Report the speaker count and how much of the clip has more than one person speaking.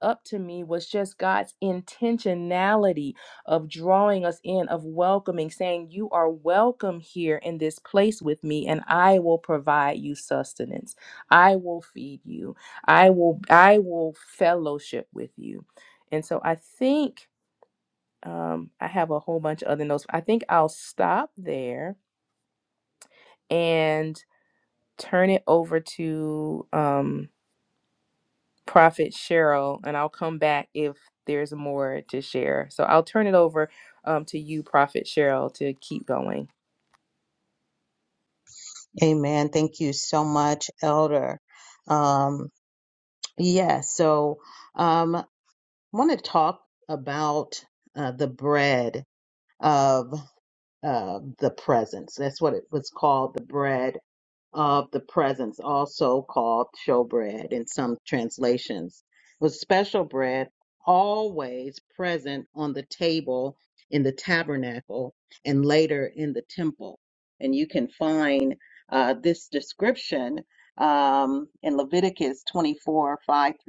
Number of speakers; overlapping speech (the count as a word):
two, no overlap